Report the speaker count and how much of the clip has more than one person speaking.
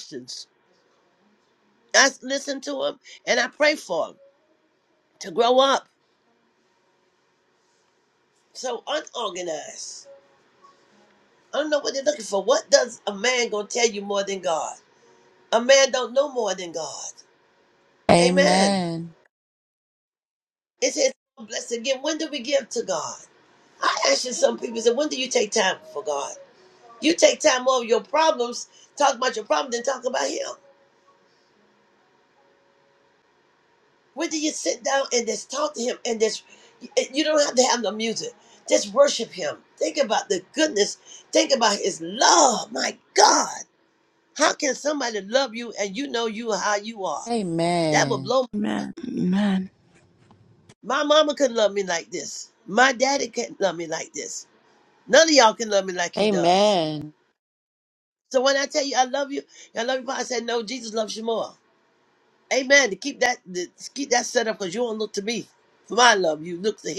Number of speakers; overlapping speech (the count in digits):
3, about 2%